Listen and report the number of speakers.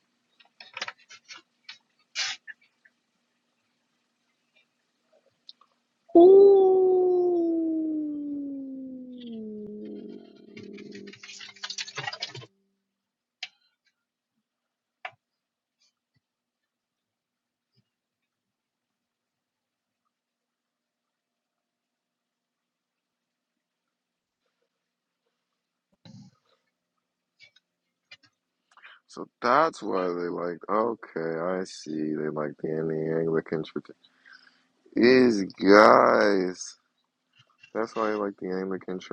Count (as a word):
one